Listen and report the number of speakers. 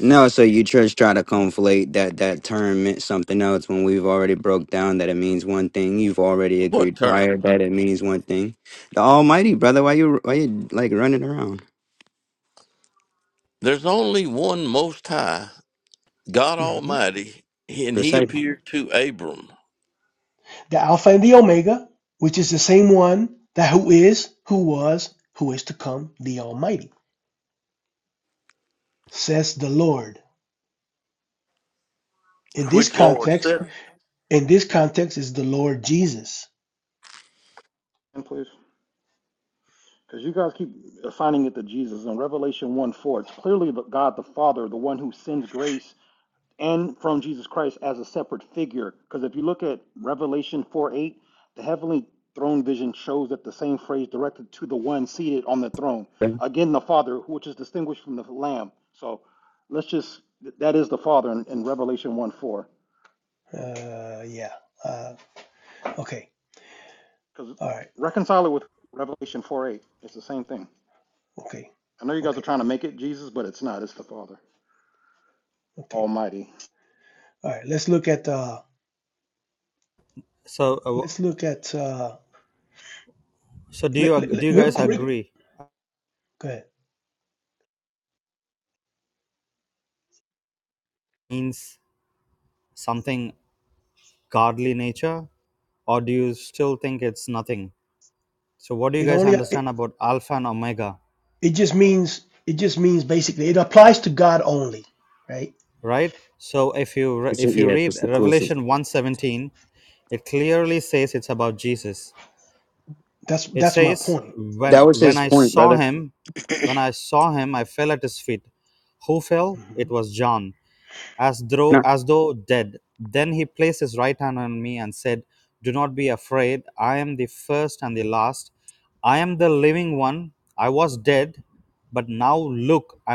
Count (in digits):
5